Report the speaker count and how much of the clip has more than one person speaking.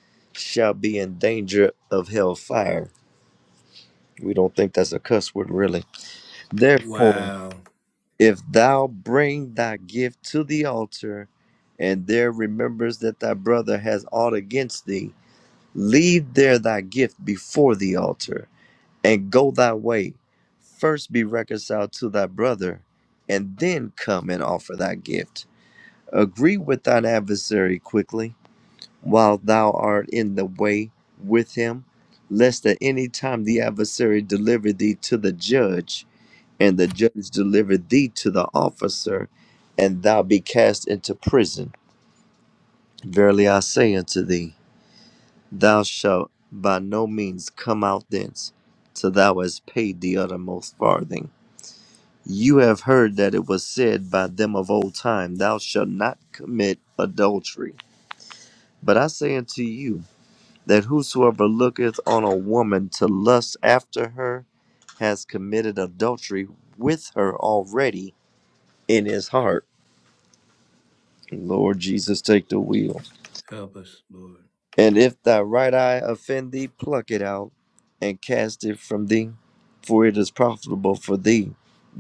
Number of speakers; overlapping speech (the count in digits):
2, about 1%